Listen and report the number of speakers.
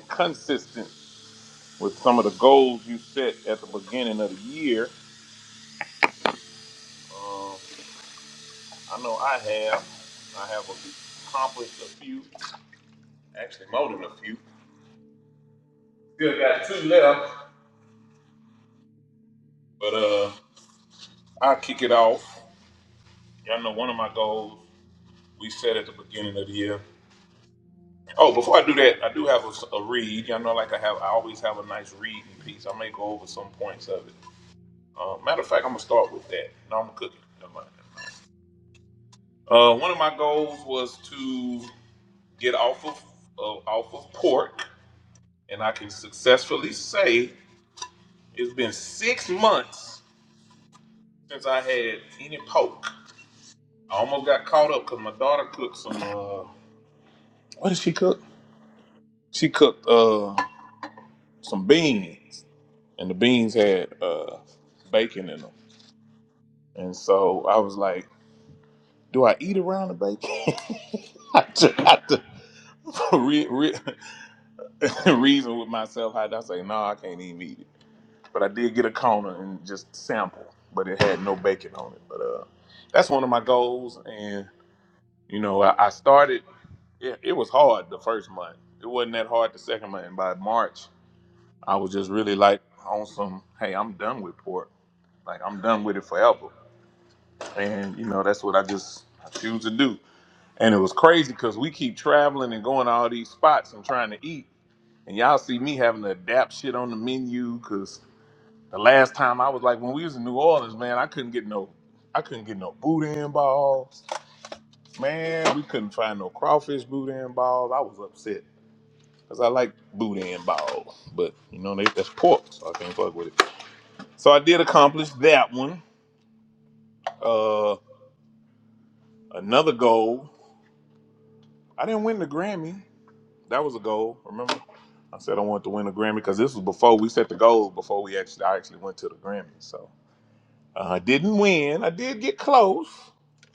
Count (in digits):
1